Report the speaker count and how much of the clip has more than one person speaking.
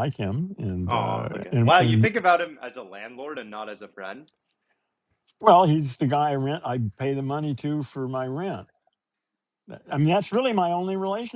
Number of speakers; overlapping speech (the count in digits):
2, about 11%